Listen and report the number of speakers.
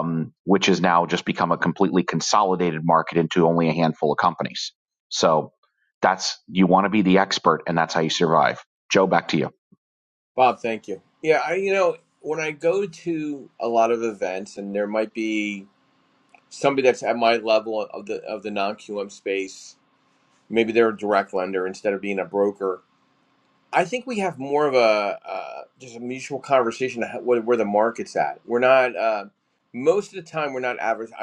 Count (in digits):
2